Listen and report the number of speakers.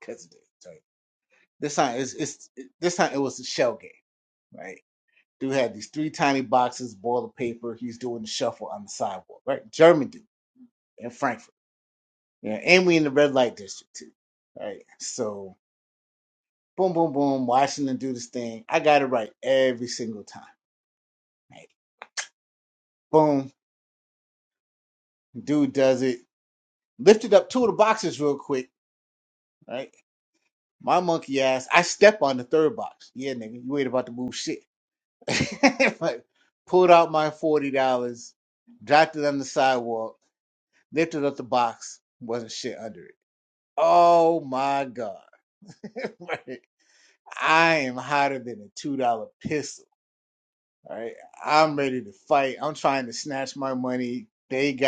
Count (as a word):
one